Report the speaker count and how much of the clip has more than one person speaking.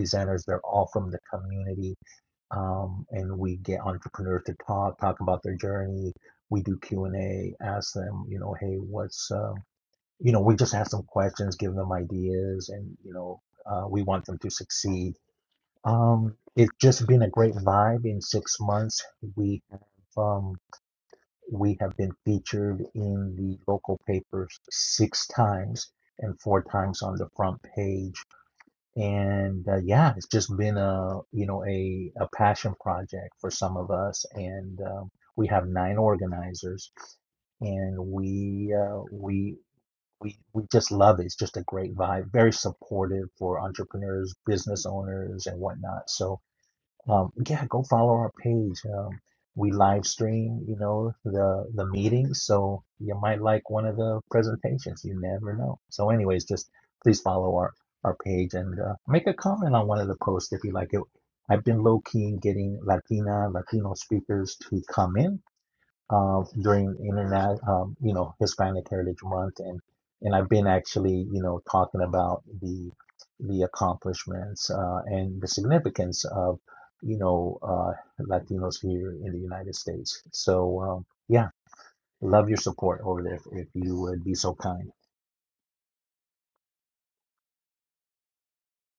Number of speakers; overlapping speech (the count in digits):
1, no overlap